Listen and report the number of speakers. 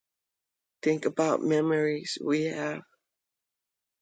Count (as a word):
one